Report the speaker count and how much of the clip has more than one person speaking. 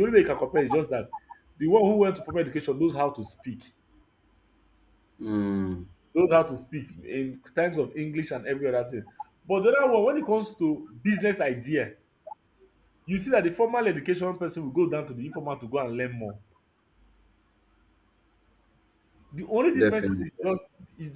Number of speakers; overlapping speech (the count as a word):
two, about 3%